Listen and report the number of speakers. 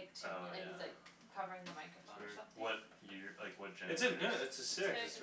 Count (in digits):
3